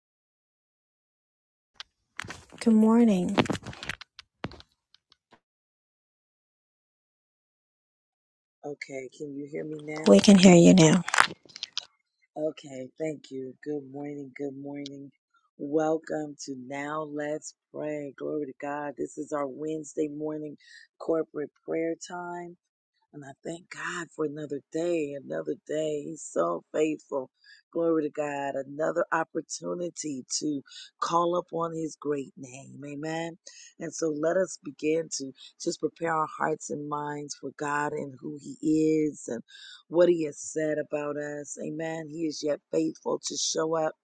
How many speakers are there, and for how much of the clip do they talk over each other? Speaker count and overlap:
two, under 1%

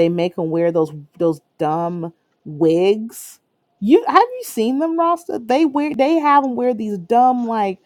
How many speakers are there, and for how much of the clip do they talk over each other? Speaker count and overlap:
one, no overlap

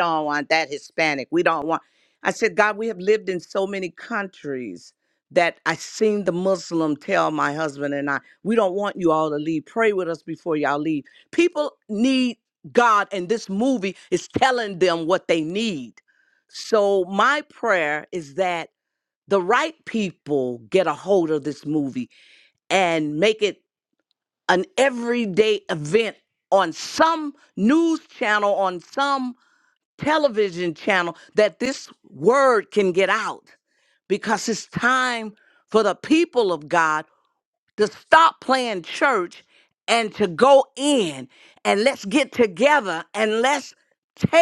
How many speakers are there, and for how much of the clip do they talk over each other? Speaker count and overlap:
one, no overlap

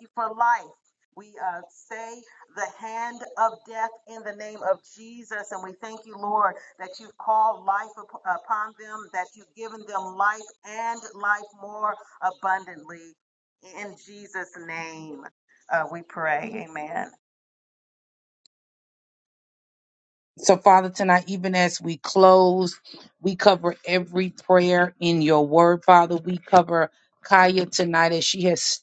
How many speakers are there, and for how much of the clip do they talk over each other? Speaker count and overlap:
two, no overlap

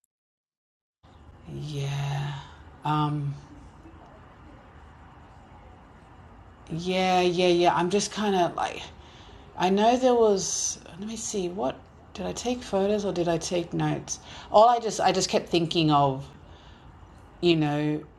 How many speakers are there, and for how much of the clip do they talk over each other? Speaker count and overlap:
one, no overlap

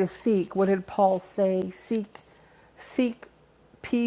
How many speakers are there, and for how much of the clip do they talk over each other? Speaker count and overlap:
one, no overlap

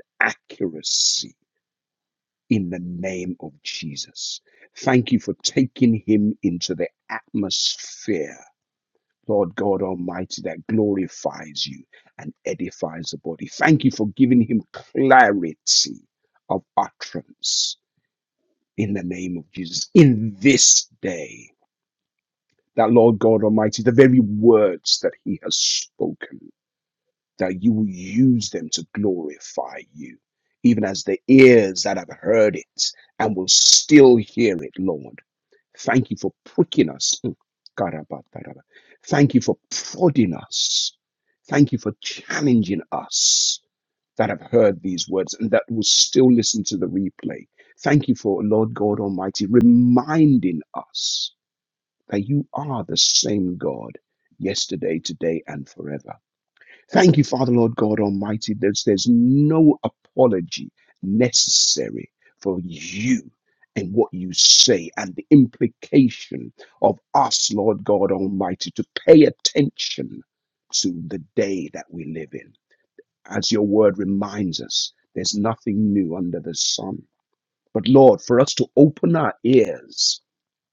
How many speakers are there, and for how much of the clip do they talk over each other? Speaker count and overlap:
one, no overlap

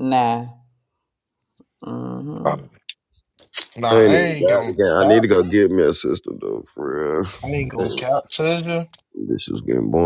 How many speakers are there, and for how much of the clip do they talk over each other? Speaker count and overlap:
three, about 17%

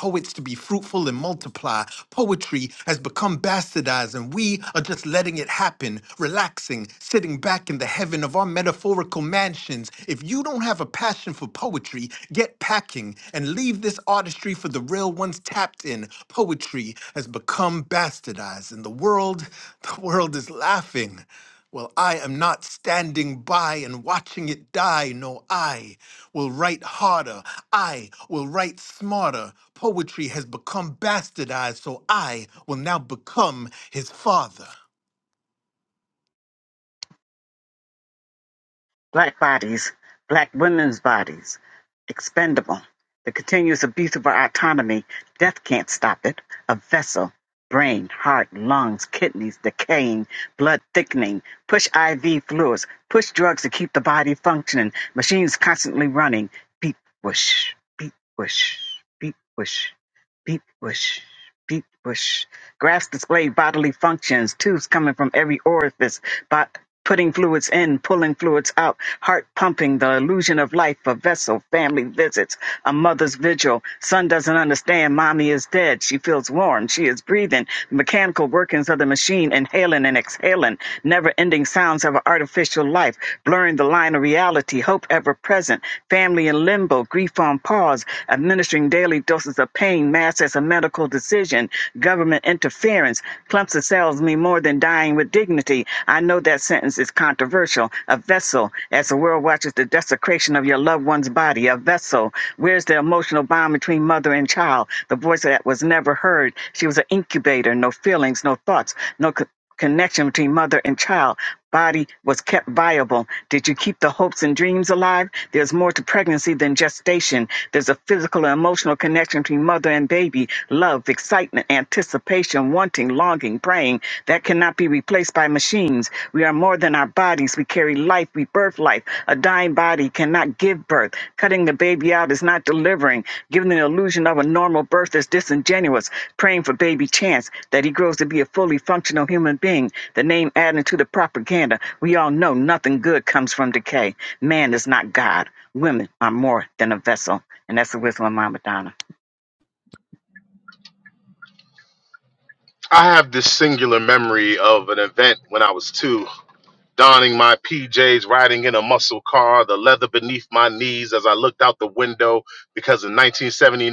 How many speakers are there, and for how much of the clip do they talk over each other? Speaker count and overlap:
three, no overlap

